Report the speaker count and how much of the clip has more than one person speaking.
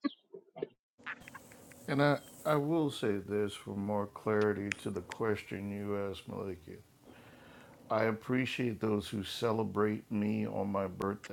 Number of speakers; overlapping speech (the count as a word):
one, no overlap